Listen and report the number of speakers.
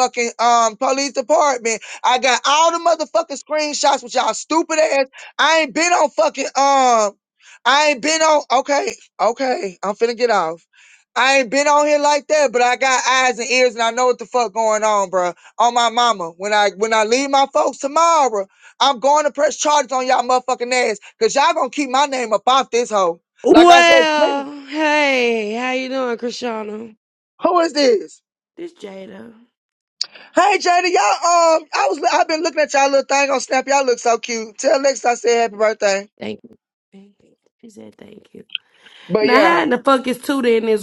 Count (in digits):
2